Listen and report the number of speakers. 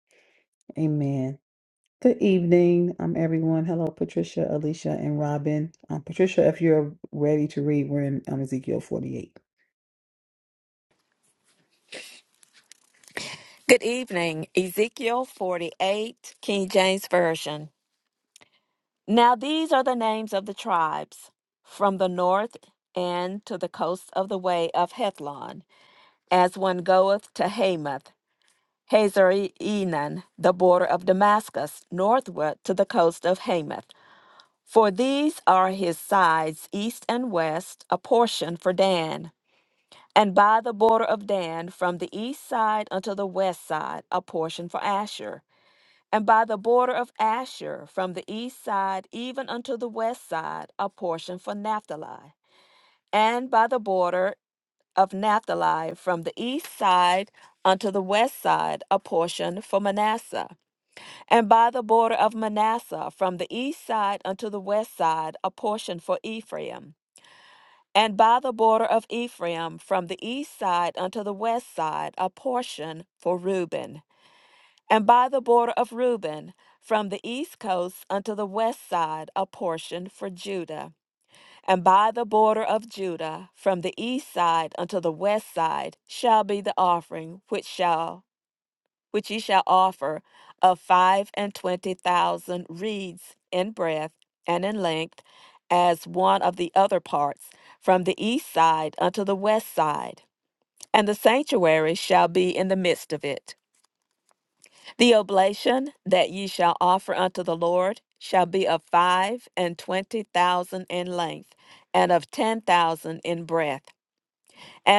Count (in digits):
2